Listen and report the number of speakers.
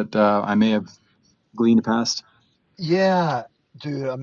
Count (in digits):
2